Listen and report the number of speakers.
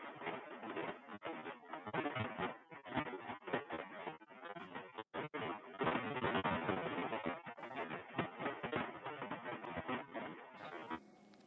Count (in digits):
0